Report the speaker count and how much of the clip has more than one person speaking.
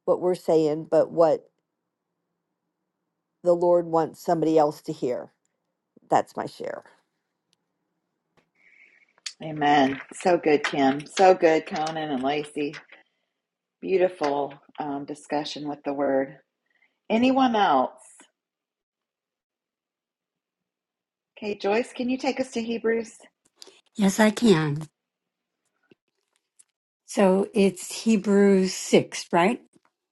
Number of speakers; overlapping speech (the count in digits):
3, no overlap